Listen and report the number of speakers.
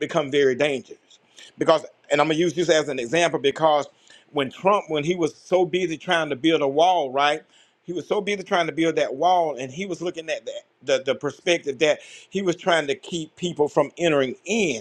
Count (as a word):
one